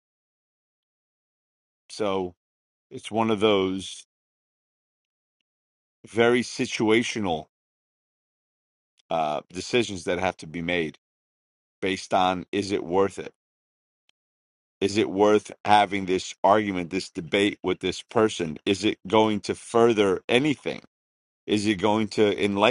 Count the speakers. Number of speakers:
1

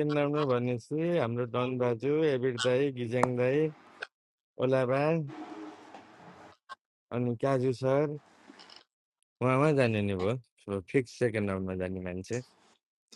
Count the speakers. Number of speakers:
1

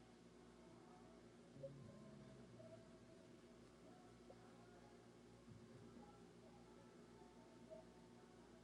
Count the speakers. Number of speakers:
0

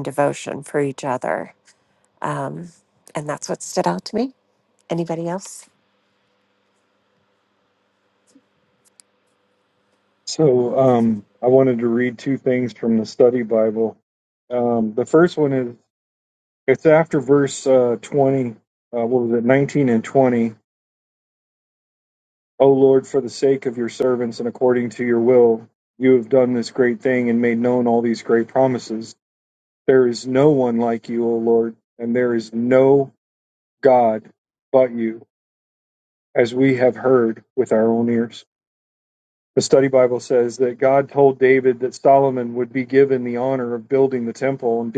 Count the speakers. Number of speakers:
2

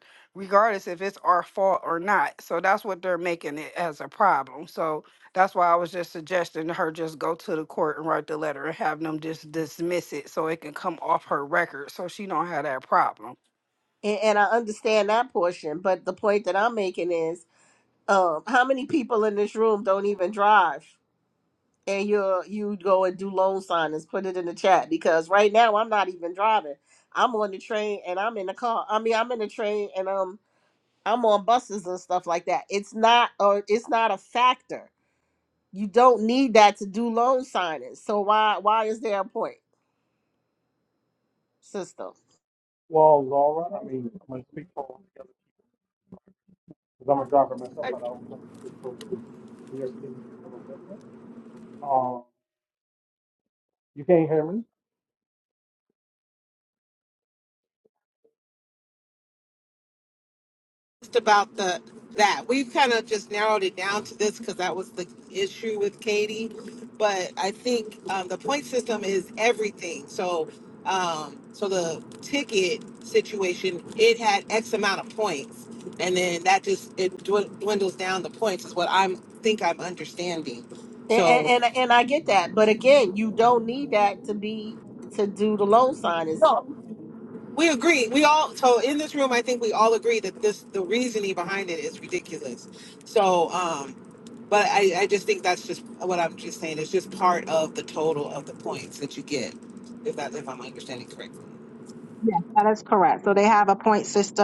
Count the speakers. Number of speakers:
5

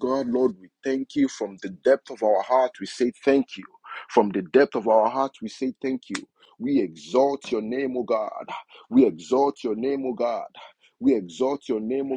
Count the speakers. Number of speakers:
1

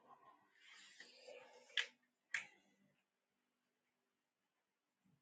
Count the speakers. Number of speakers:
0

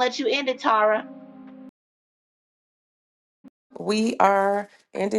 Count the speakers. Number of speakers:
2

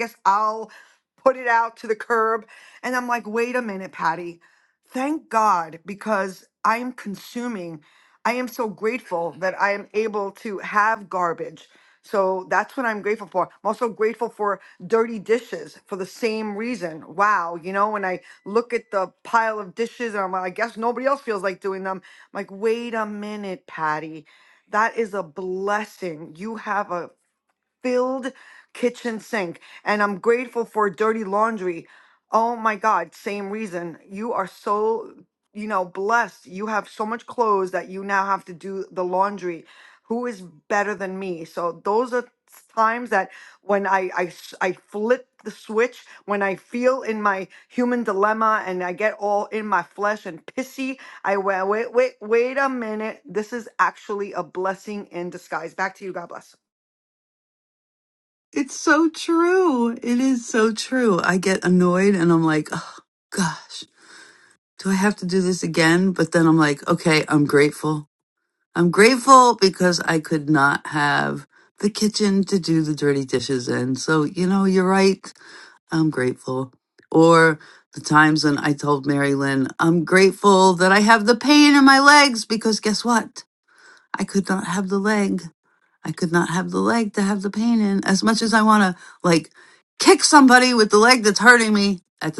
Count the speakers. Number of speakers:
2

